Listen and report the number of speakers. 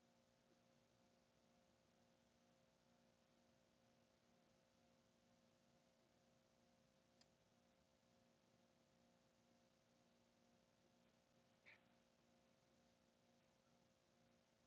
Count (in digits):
0